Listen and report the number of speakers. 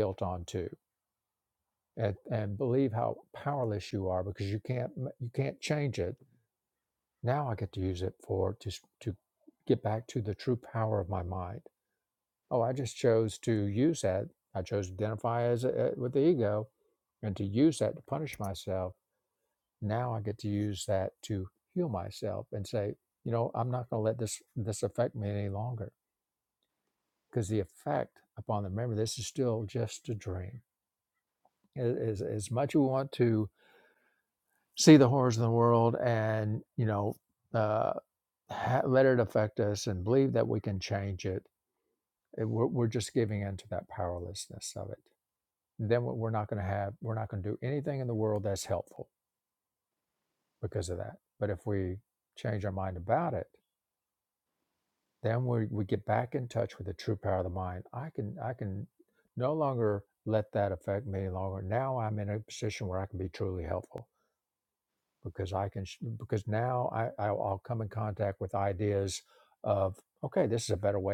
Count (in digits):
1